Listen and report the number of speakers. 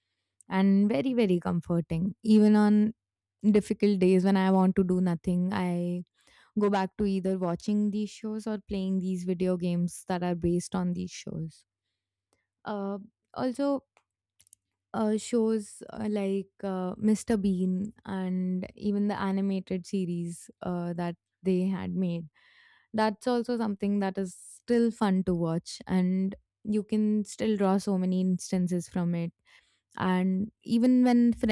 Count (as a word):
one